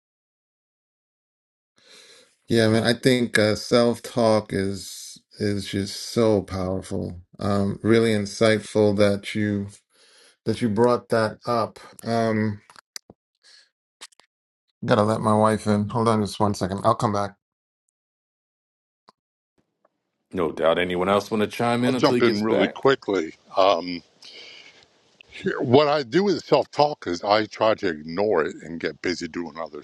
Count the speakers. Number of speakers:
three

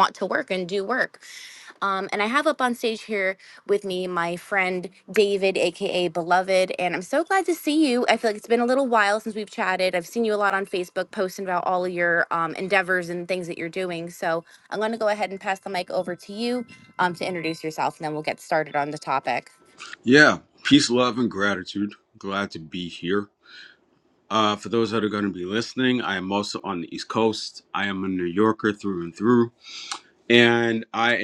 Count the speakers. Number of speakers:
two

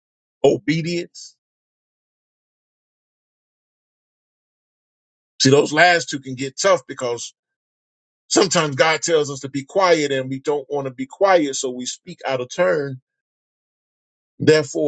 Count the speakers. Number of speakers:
one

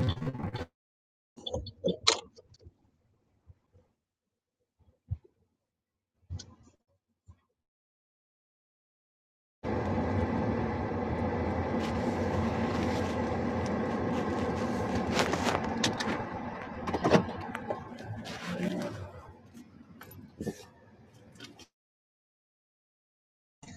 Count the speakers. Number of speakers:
zero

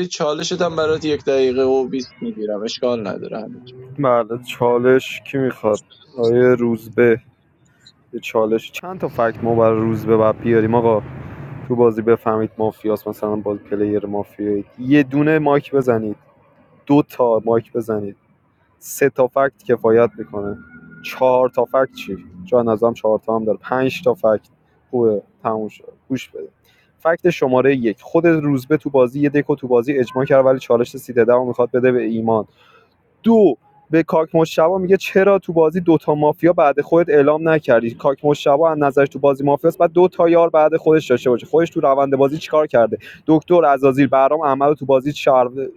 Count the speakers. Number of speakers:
two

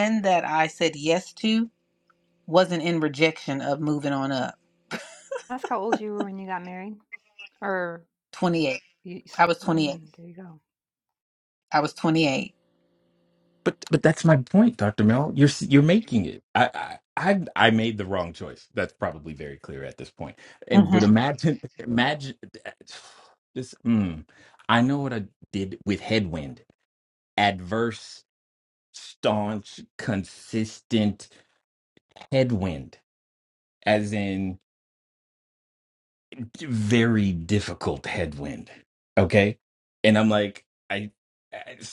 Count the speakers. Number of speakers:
three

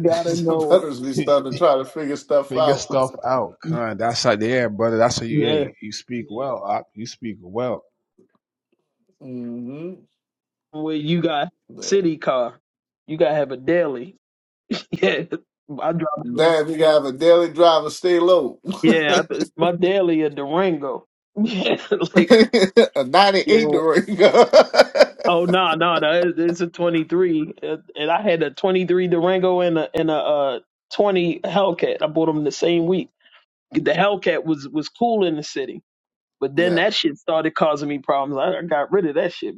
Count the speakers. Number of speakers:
three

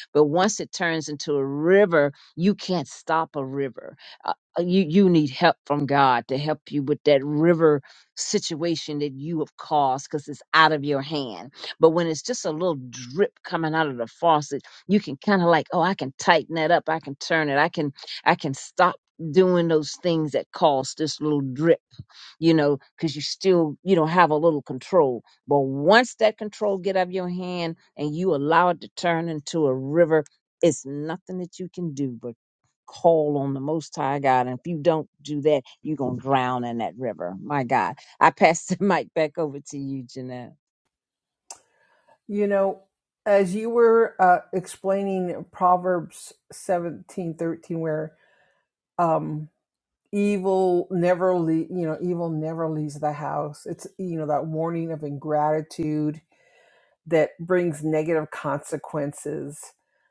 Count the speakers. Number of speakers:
two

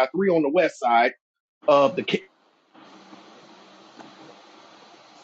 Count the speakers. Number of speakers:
one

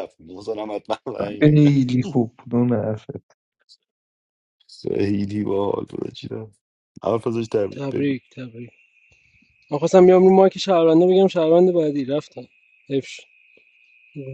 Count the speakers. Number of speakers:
three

